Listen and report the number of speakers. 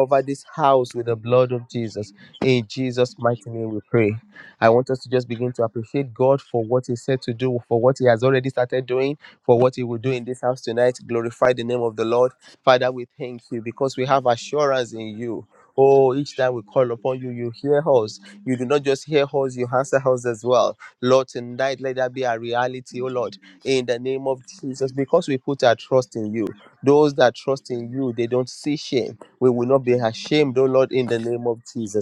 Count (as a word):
one